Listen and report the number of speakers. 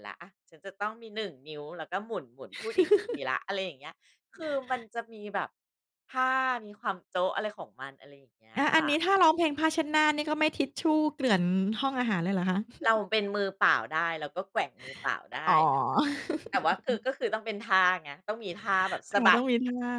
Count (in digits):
2